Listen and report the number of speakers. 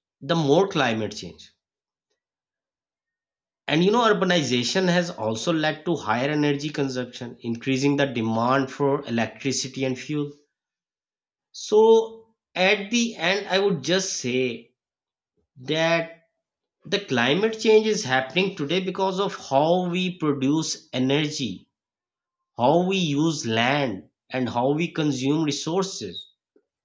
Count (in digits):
1